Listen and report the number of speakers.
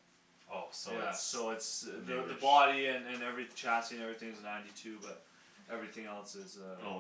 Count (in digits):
2